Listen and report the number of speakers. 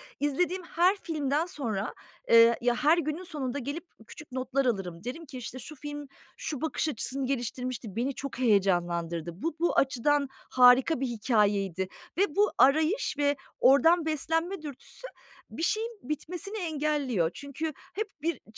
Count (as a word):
one